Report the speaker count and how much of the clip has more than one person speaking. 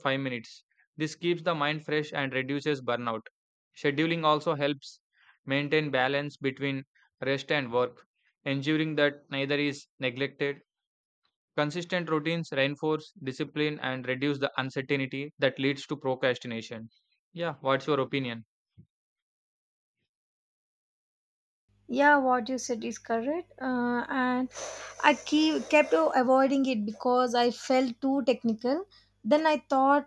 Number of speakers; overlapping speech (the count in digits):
2, no overlap